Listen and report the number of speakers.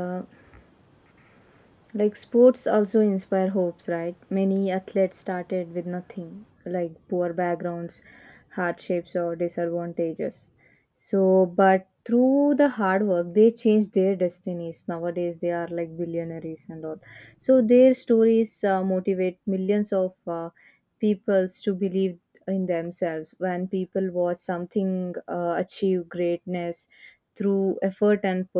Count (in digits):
1